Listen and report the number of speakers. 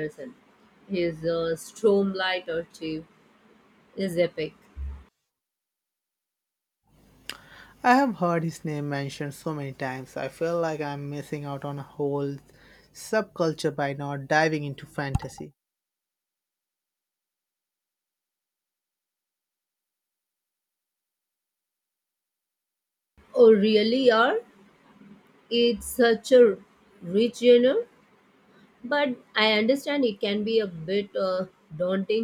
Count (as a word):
two